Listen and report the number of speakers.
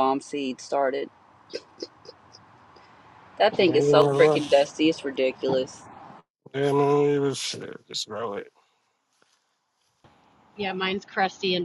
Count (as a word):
three